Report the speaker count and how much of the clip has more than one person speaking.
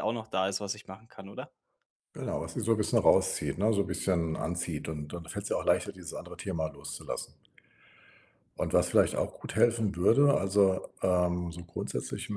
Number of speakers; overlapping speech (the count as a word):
two, no overlap